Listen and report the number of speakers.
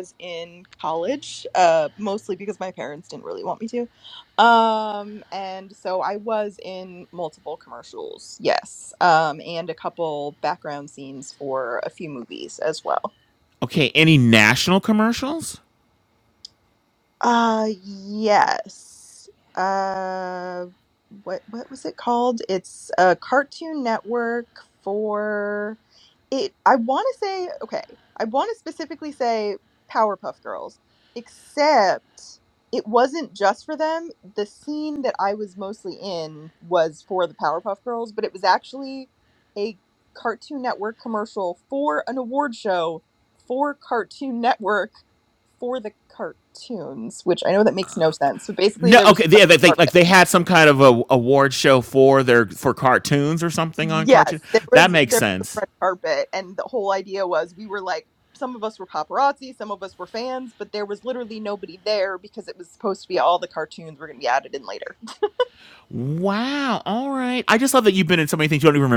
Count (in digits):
2